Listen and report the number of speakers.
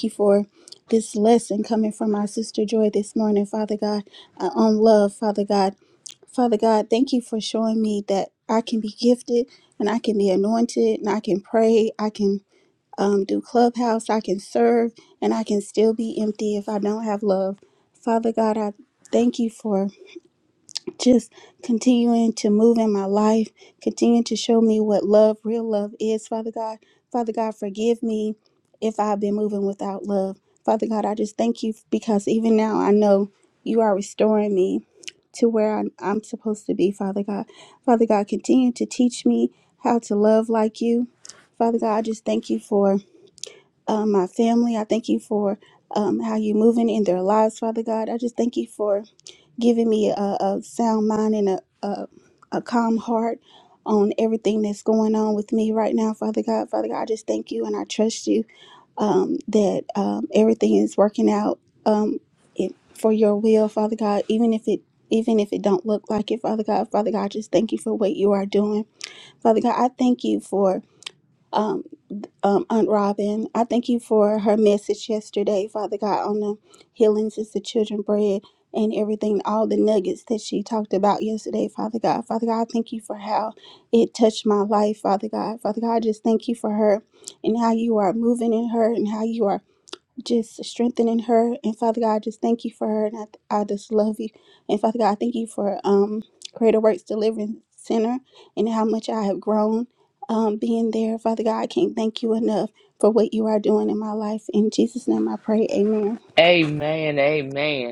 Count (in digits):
2